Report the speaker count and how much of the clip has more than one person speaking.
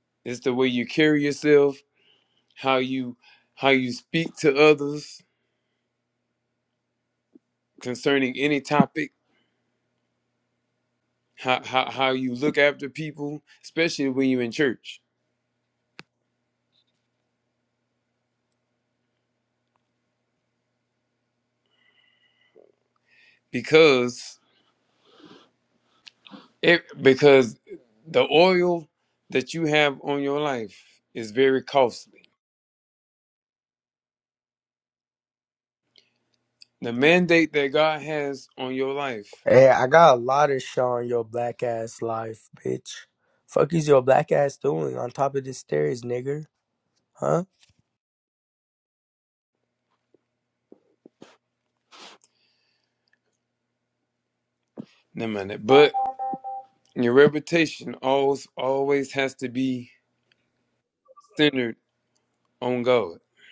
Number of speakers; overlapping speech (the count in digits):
2, no overlap